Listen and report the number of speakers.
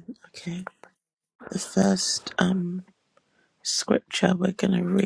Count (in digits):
1